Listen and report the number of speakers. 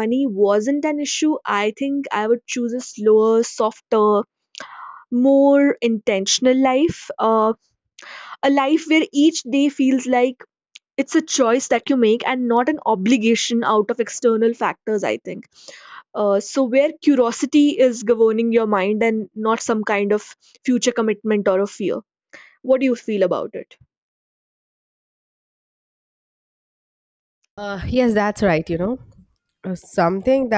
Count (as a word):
two